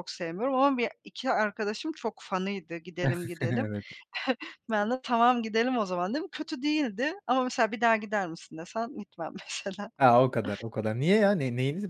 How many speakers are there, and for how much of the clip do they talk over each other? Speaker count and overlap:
two, under 1%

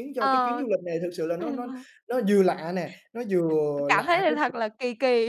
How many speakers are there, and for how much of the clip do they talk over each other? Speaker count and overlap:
two, about 17%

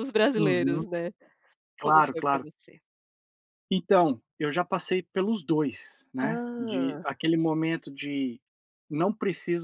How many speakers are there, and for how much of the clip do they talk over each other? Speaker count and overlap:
two, about 21%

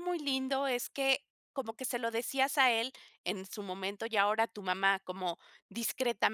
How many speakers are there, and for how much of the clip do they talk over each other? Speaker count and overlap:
one, no overlap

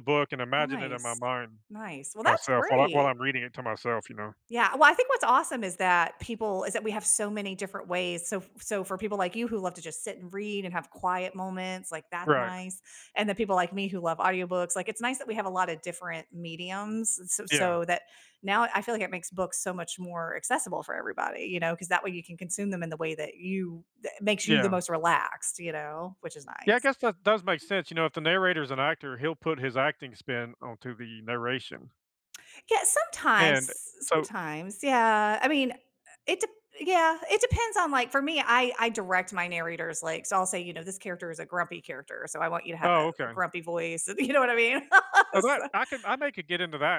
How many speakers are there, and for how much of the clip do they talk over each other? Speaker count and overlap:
two, about 7%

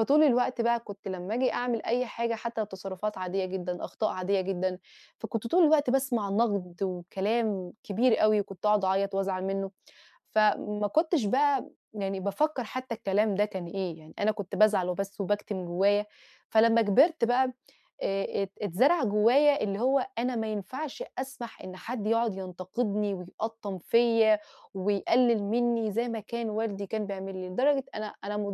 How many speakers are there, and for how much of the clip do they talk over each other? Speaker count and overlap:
one, no overlap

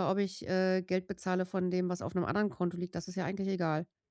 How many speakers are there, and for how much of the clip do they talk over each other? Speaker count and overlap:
one, no overlap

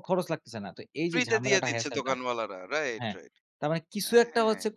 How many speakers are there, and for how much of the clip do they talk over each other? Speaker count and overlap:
two, about 38%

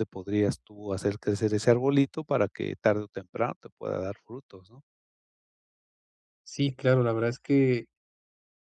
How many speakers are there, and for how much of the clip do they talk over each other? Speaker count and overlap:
two, no overlap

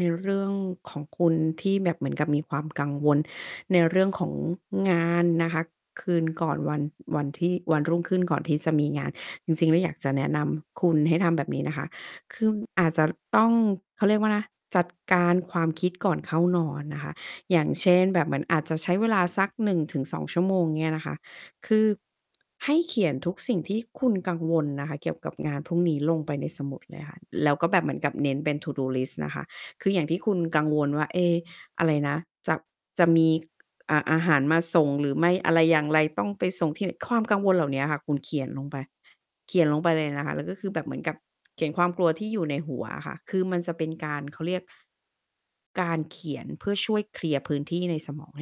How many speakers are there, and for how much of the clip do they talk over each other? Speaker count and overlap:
one, no overlap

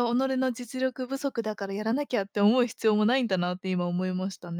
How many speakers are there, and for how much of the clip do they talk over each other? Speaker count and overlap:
one, no overlap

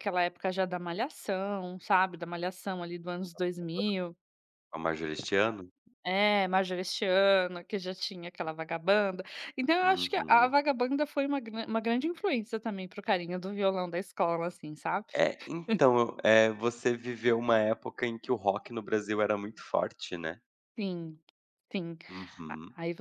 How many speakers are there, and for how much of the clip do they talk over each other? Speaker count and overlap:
two, about 3%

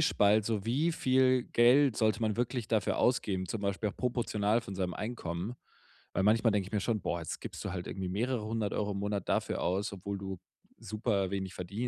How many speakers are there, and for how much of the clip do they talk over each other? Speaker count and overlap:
one, no overlap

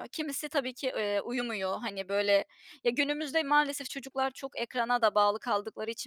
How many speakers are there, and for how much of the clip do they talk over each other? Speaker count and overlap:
one, no overlap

